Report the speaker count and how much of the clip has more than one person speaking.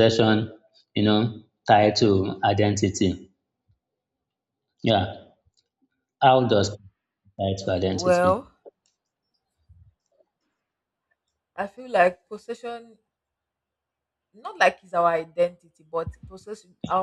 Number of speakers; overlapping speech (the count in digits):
2, about 2%